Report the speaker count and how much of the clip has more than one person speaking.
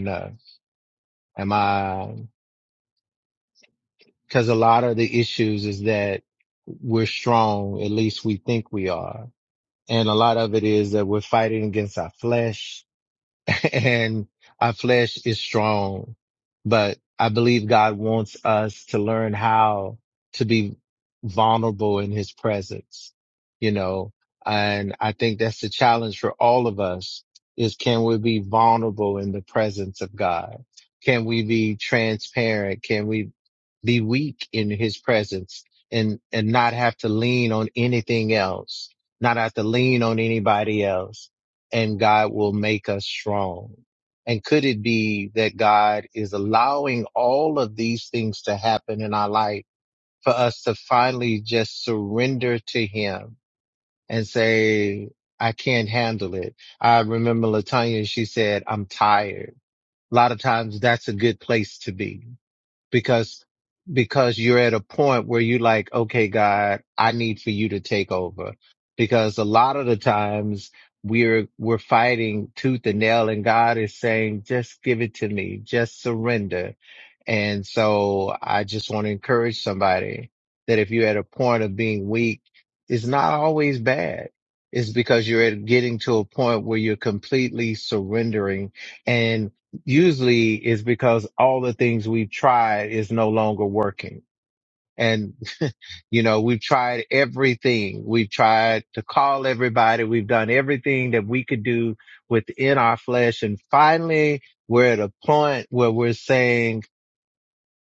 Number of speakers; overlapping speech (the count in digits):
1, no overlap